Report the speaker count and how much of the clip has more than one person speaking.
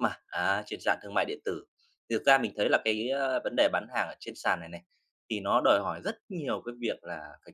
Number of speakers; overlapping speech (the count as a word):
one, no overlap